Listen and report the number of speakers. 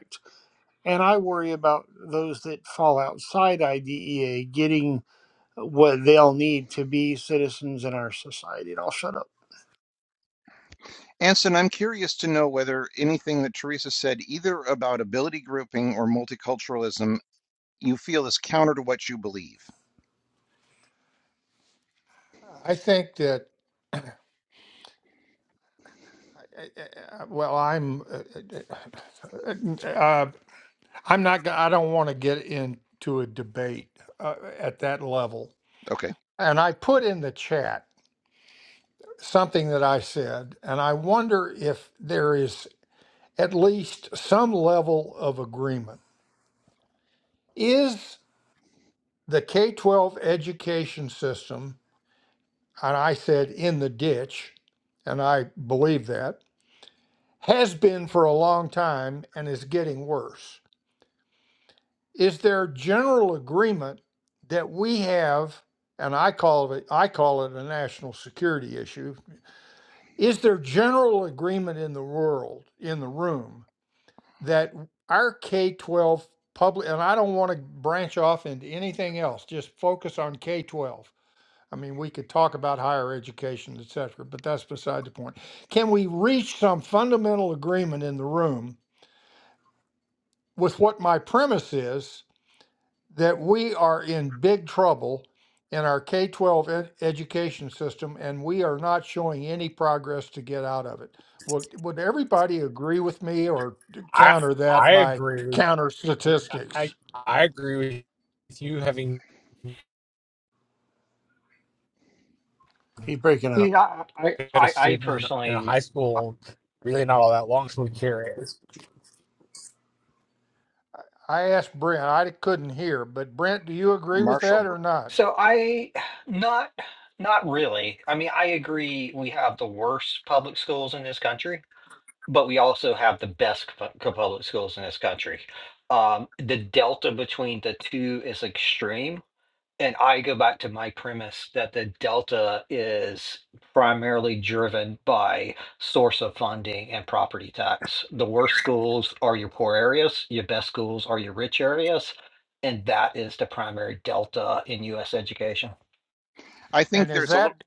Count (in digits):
5